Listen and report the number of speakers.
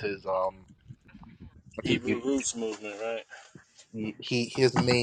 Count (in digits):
2